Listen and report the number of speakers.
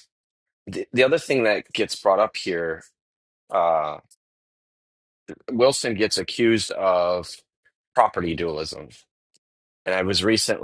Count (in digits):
1